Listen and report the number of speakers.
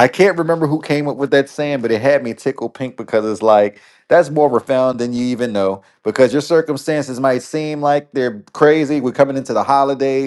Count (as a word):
one